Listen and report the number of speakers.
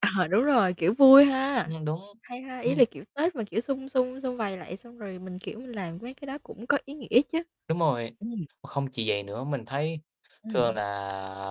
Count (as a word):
two